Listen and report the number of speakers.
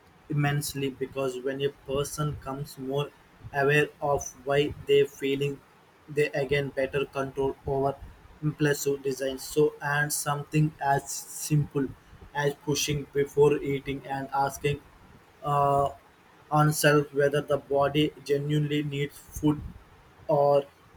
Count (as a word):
one